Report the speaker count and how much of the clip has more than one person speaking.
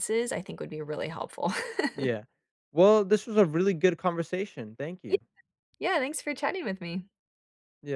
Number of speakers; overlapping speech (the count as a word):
two, about 1%